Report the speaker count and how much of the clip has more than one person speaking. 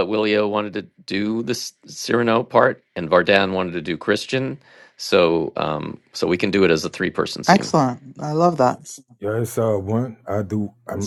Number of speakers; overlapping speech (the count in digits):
3, about 2%